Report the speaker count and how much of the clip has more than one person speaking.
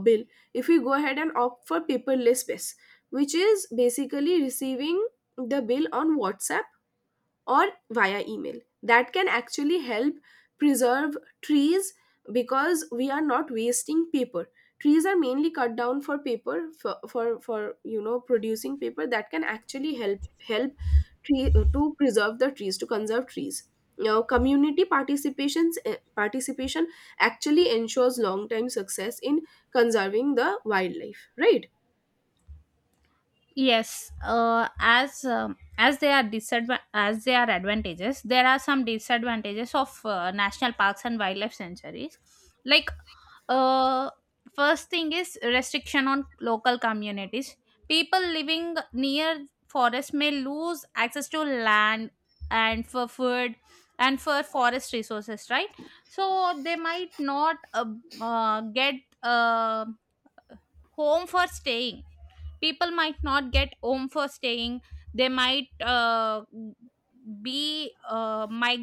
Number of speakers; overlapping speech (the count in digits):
2, no overlap